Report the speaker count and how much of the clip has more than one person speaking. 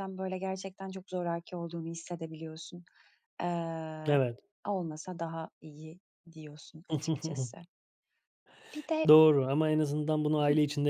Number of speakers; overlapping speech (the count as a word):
two, about 3%